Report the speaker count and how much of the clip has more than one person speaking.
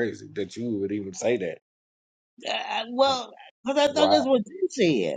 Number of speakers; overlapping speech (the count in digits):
2, about 8%